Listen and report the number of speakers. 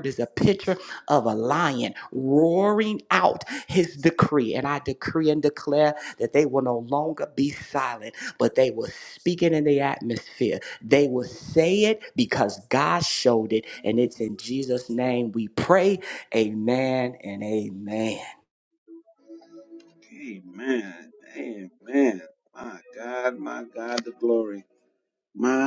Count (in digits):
2